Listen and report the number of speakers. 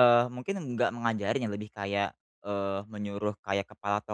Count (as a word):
one